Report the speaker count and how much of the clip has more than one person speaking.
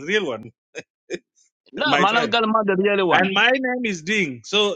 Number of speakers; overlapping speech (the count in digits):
2, about 15%